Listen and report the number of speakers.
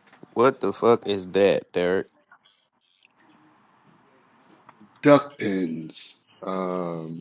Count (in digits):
2